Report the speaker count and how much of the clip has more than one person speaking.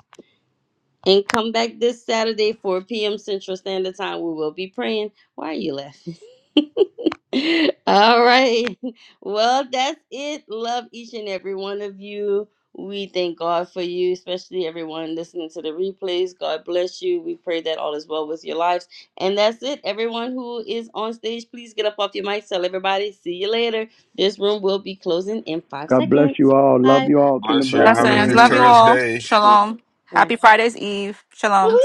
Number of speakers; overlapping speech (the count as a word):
three, about 7%